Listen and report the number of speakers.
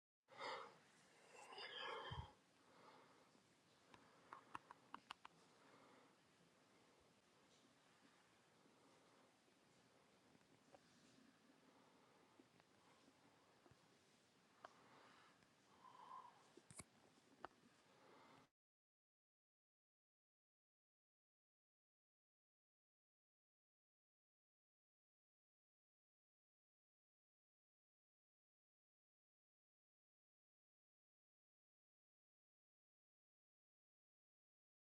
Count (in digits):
0